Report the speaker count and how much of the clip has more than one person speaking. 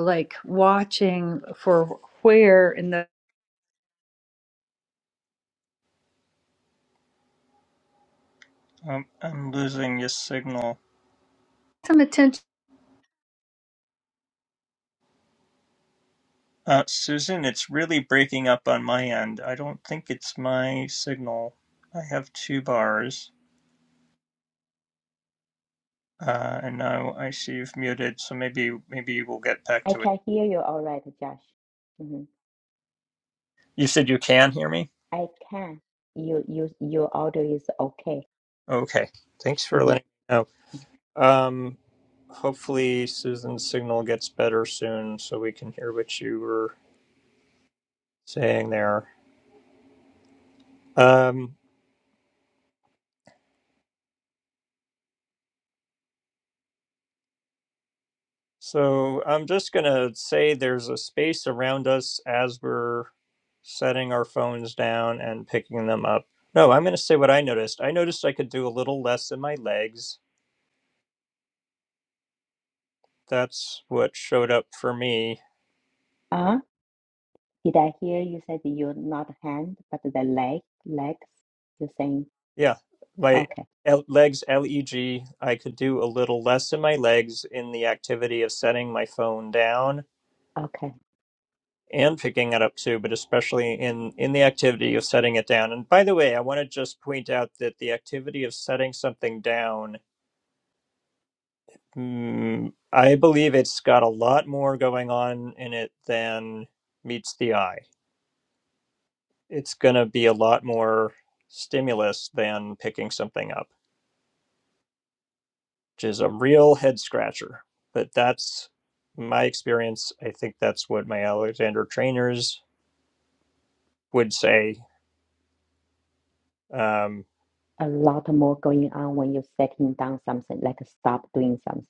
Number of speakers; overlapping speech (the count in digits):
3, about 1%